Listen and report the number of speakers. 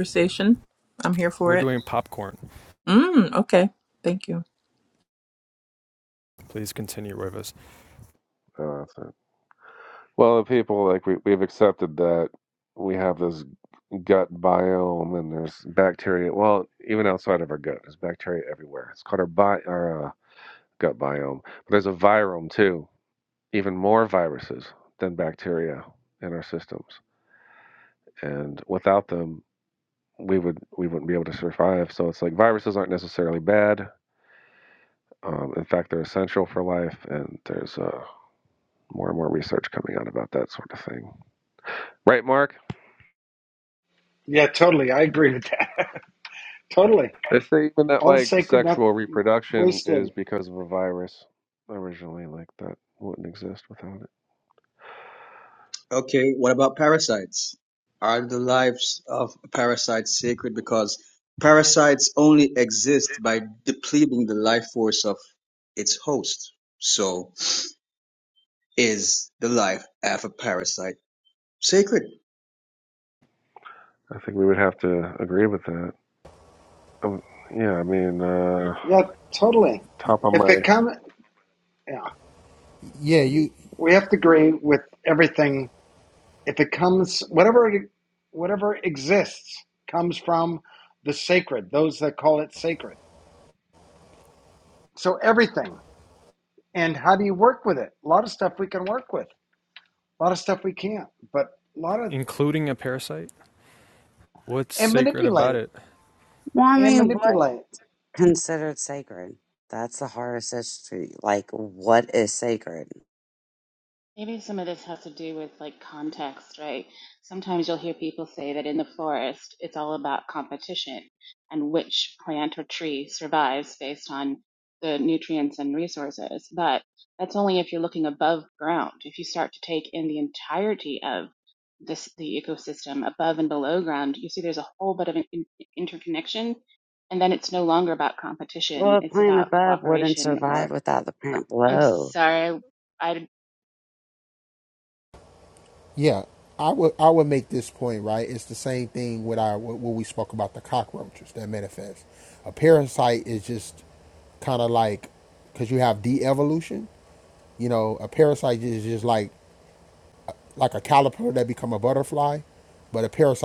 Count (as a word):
eight